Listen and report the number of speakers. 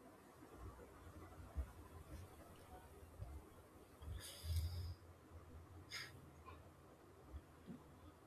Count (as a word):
zero